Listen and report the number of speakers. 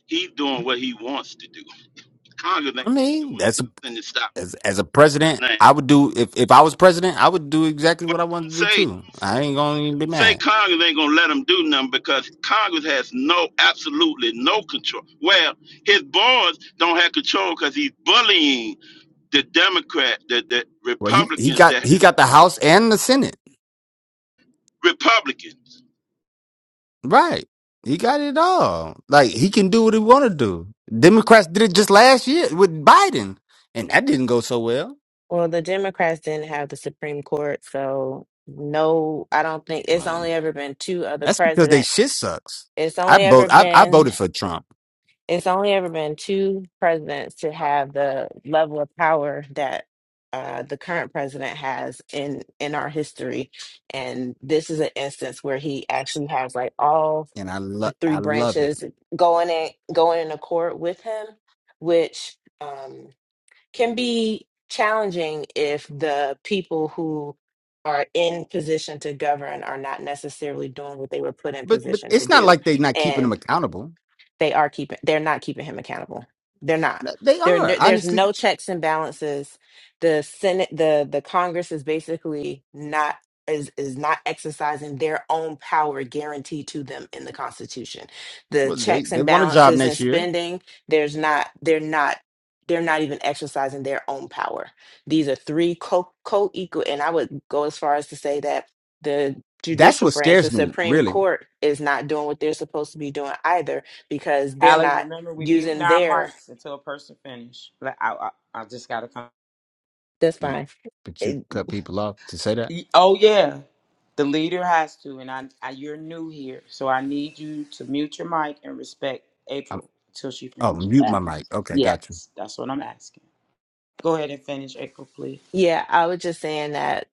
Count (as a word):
four